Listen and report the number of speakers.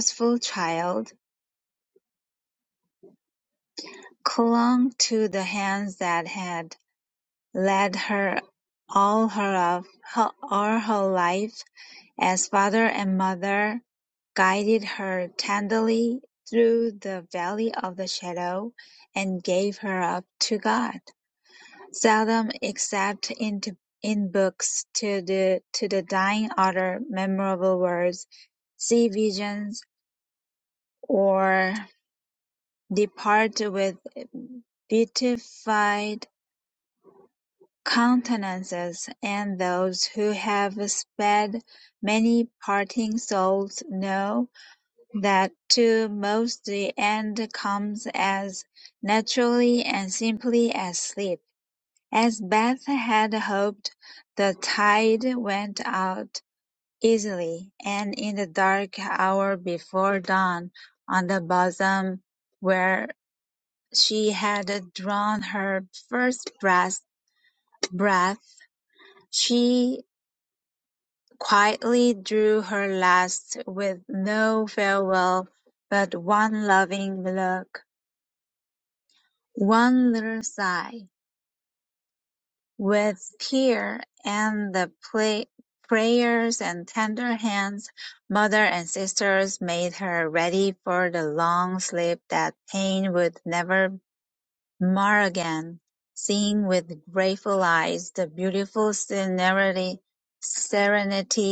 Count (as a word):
one